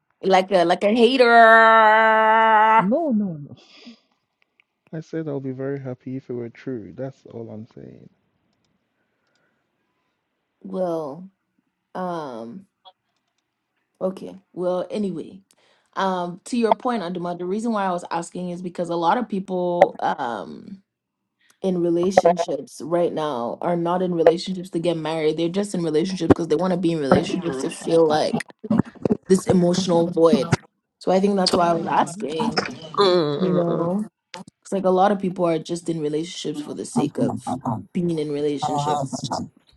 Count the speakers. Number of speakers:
three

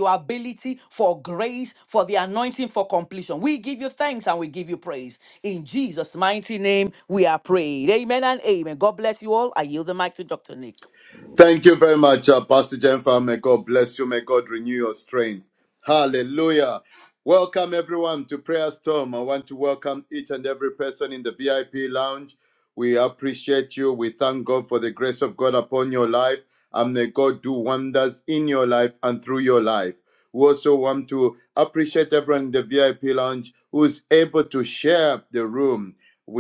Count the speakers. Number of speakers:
two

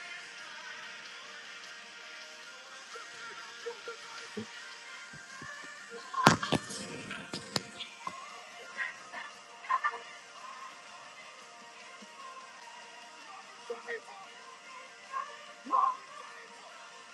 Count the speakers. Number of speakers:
zero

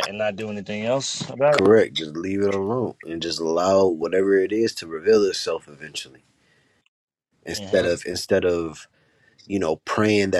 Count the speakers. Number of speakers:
two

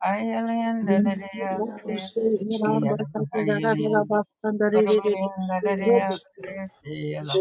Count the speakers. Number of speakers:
three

